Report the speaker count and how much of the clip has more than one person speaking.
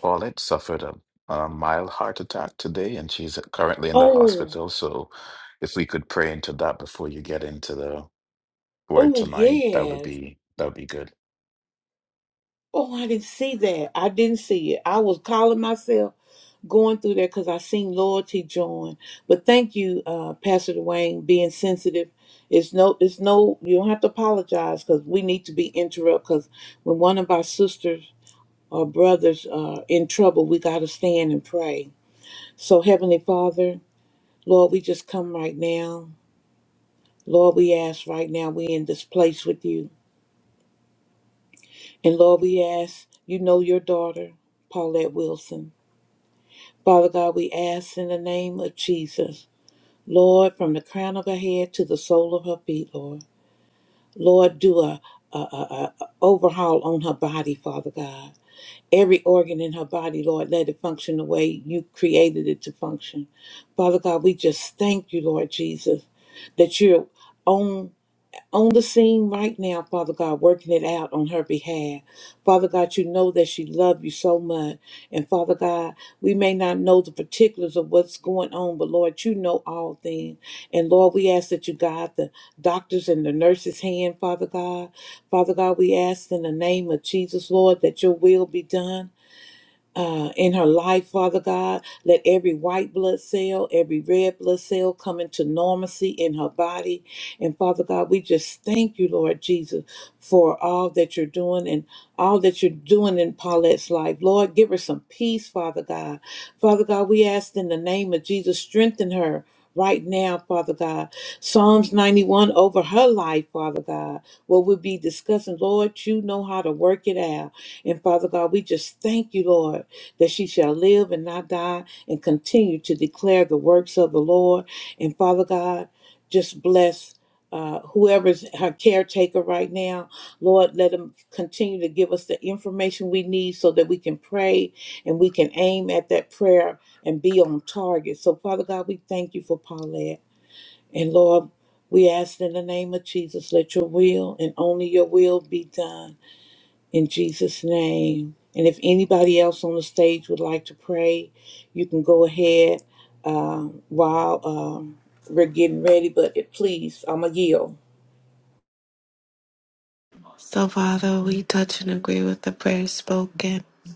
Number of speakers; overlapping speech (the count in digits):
3, about 1%